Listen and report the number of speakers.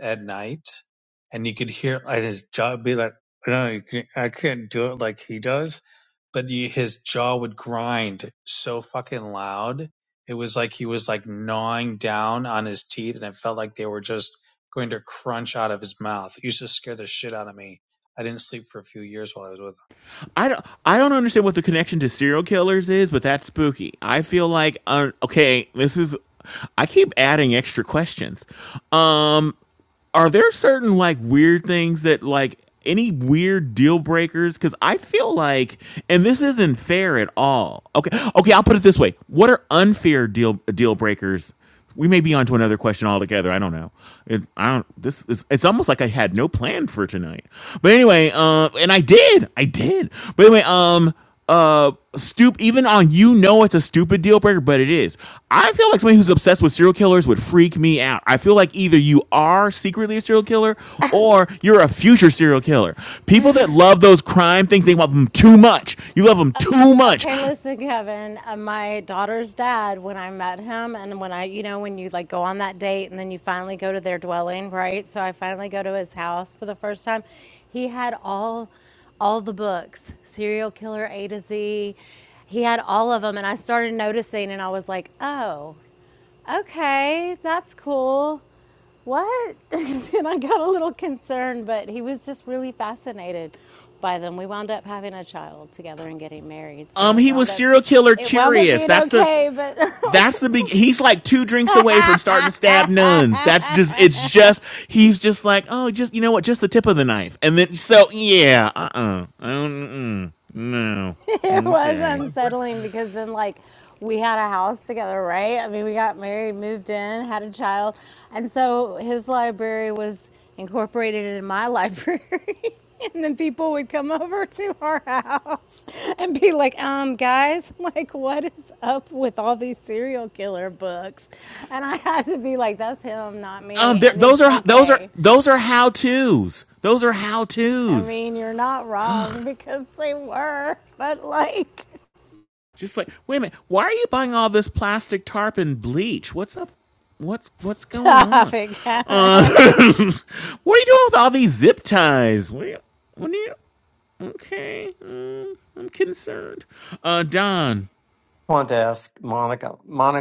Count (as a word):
four